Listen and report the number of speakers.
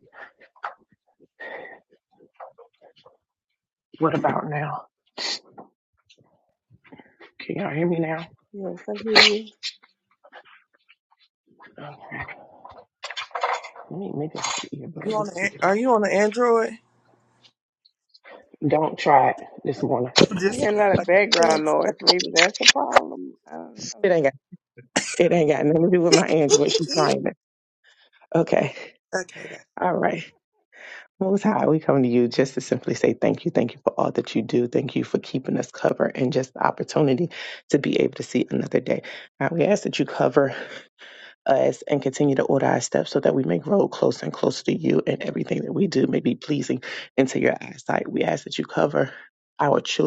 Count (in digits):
3